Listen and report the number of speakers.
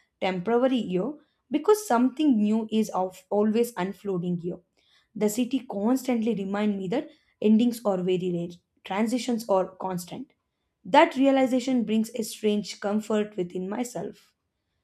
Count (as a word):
one